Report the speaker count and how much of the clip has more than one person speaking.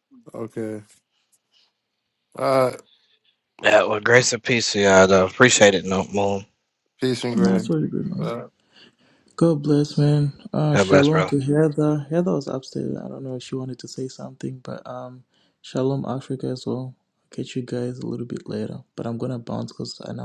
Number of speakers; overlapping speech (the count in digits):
3, about 5%